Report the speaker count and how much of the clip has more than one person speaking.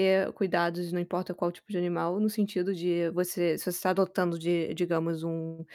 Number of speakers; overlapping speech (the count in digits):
1, no overlap